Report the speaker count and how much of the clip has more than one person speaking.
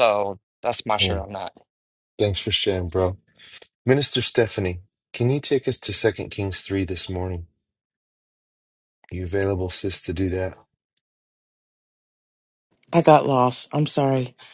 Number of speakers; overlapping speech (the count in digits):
3, about 1%